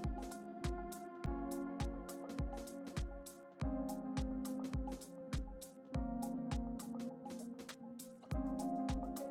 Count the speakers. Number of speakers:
zero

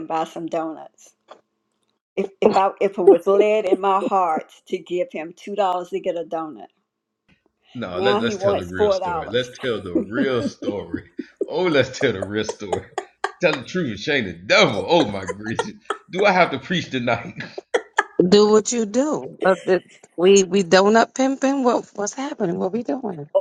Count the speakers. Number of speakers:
three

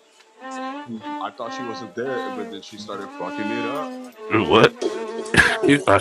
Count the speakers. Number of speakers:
two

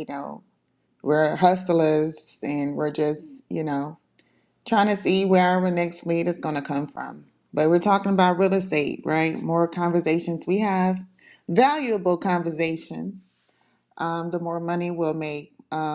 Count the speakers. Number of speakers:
one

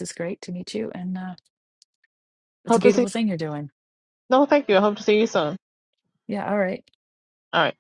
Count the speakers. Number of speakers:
two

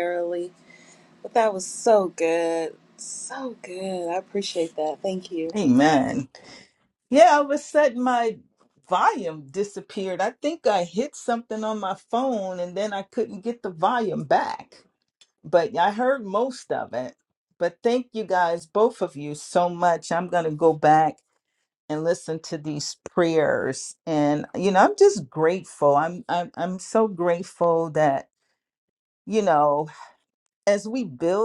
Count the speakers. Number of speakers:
two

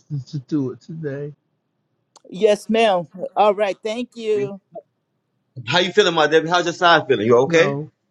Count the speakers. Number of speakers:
three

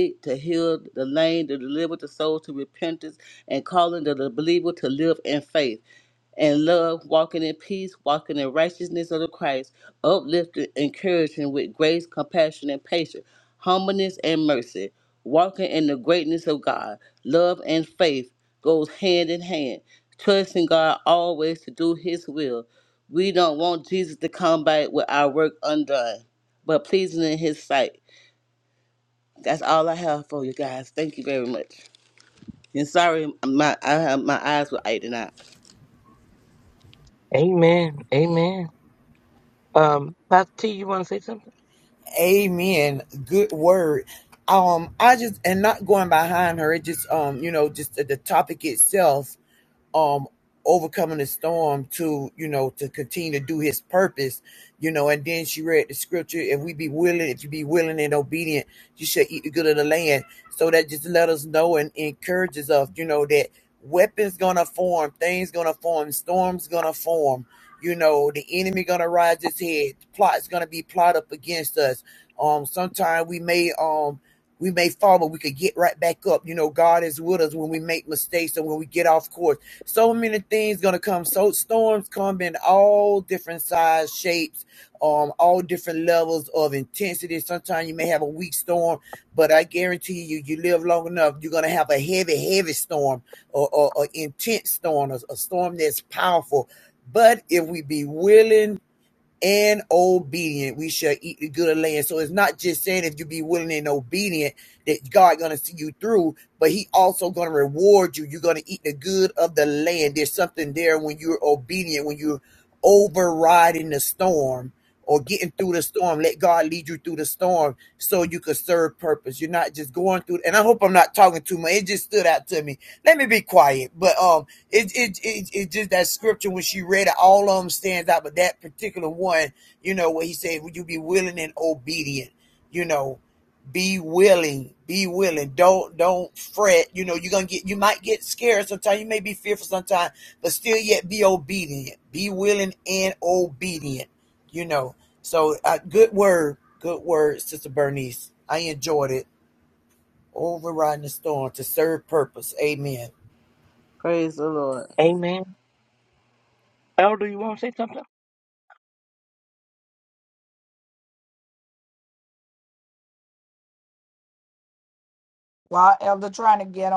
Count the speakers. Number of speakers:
four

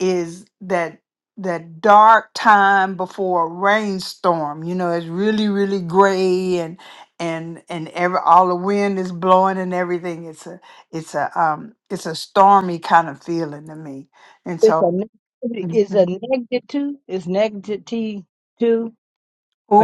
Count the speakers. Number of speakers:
two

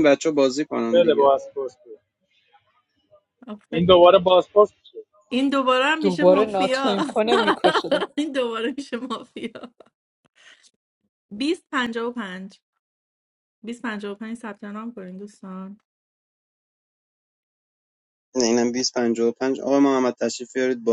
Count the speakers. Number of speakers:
four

